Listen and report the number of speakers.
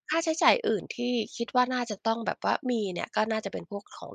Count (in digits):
1